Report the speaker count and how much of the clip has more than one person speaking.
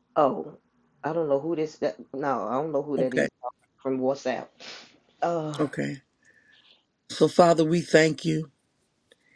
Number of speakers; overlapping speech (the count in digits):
2, about 3%